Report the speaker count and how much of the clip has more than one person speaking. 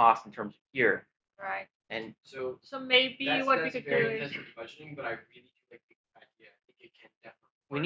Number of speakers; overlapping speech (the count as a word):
three, about 18%